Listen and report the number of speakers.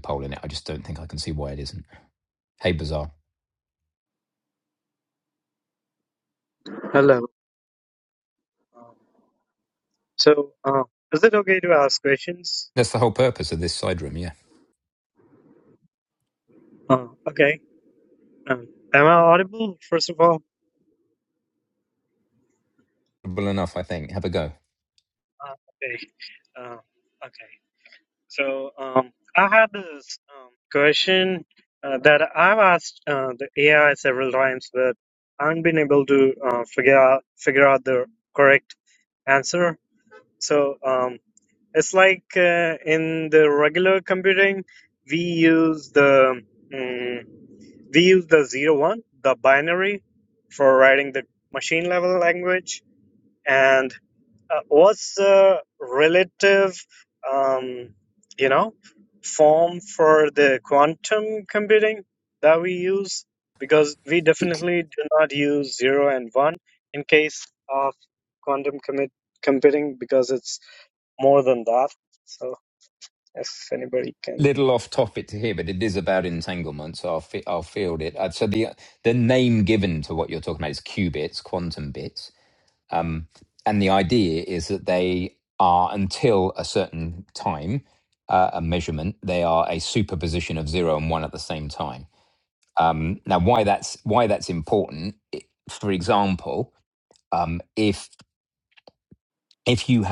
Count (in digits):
2